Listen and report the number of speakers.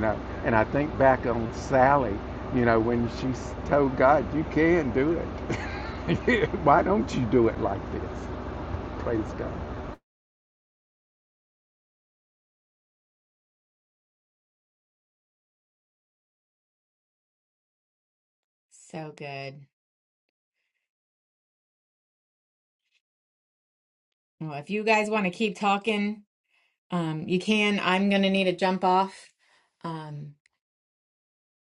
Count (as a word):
two